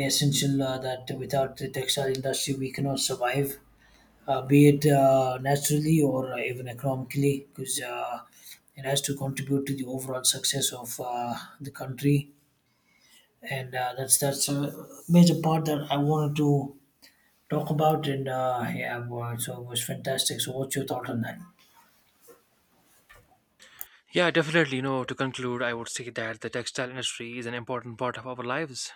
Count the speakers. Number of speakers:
two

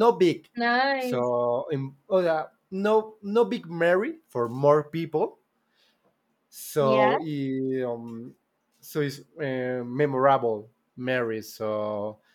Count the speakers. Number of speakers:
two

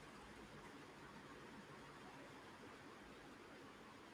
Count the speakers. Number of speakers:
zero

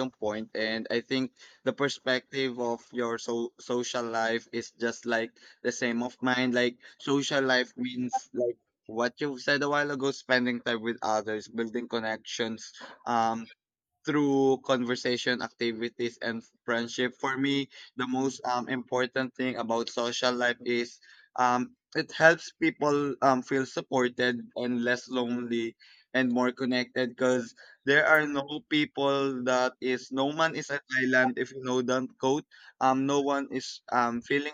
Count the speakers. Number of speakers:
one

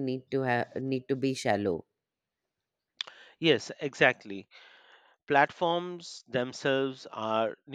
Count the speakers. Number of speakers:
two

